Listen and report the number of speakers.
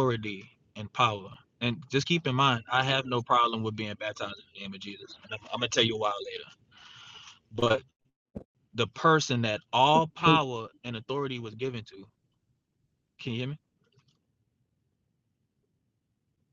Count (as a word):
one